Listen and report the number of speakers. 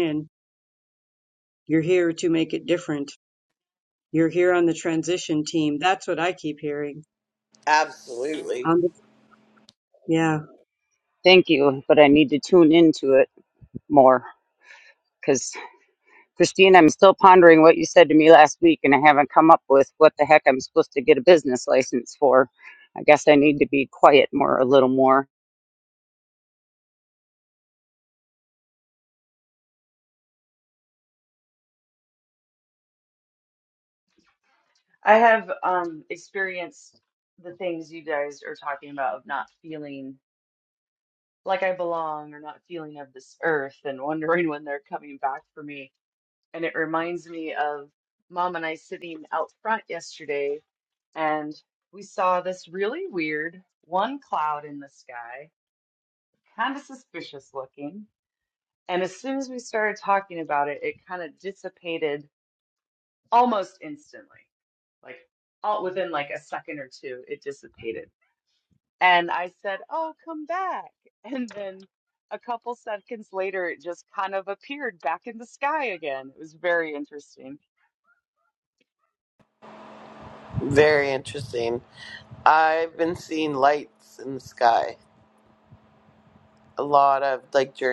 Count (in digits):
4